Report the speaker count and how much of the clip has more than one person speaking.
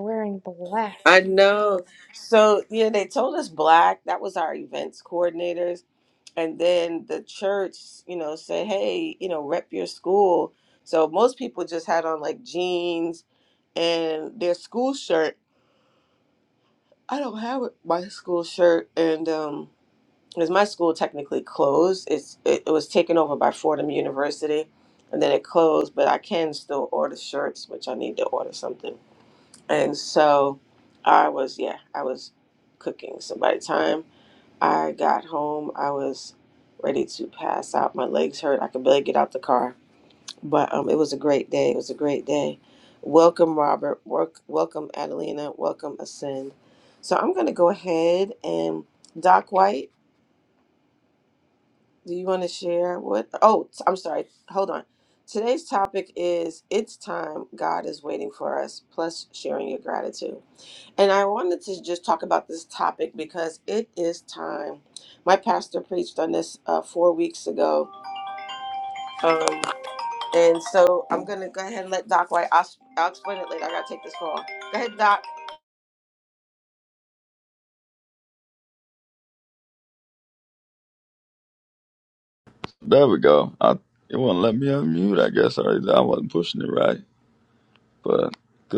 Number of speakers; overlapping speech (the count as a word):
three, no overlap